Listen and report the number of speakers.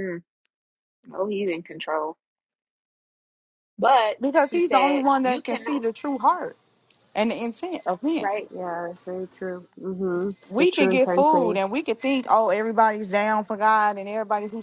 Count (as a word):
three